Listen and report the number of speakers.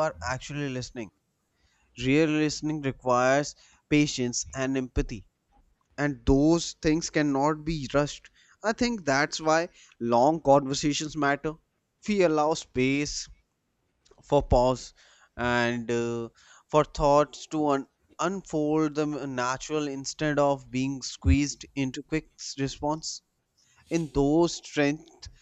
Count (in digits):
1